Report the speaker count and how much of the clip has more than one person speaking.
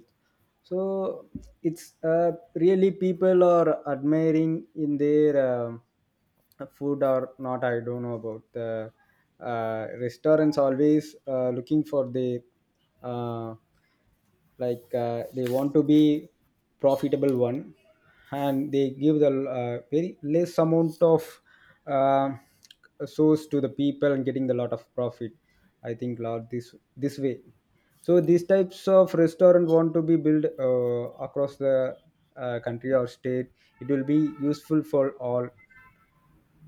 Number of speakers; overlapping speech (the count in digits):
1, no overlap